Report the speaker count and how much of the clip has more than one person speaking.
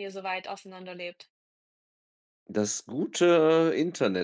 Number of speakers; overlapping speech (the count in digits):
2, no overlap